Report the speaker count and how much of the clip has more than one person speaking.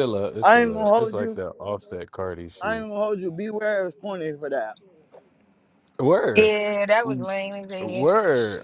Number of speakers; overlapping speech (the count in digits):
3, about 21%